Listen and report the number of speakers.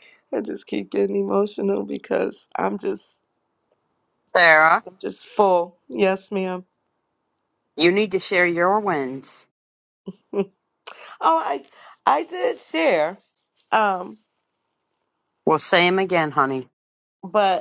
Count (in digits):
2